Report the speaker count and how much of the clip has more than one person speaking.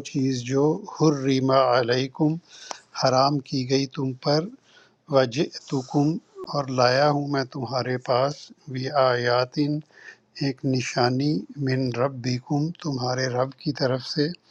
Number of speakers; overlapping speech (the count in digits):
1, no overlap